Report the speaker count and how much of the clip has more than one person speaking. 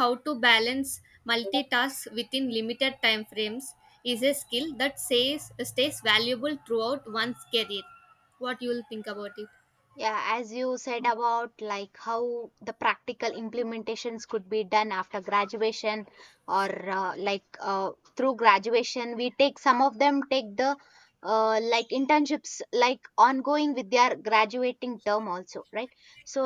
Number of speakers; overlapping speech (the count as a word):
two, no overlap